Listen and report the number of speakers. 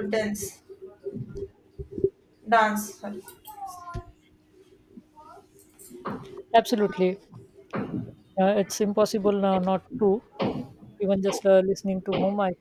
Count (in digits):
2